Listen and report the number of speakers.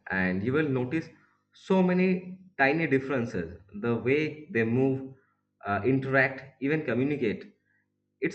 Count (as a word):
one